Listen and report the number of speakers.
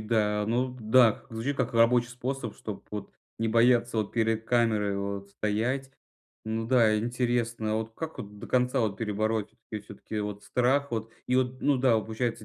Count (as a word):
one